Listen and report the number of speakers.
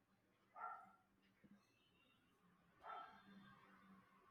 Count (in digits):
0